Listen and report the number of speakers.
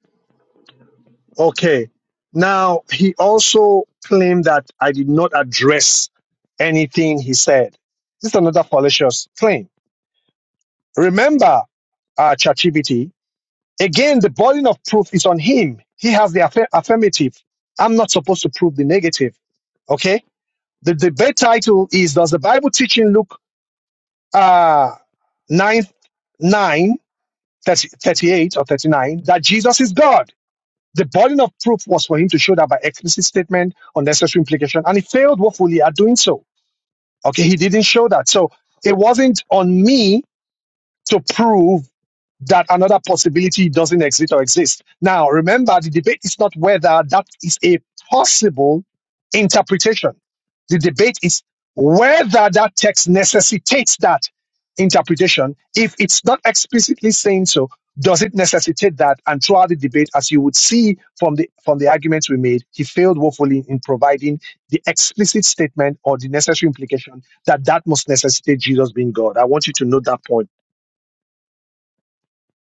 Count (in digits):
1